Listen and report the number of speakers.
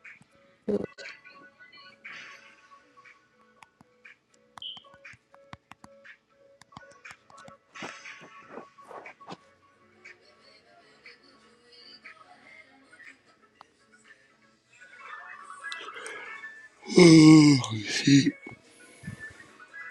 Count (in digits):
1